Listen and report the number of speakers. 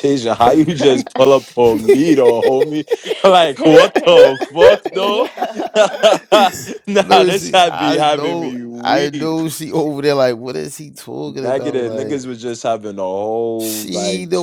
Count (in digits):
3